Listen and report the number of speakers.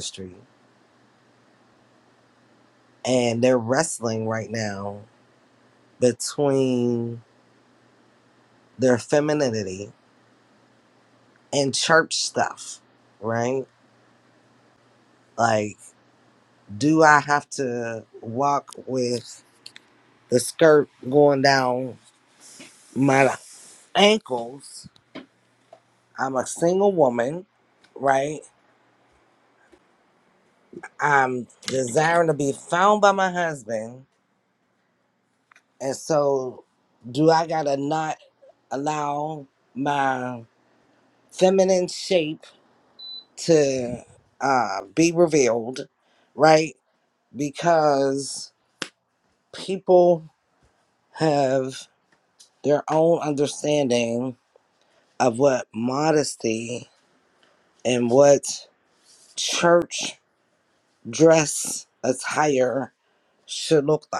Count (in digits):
1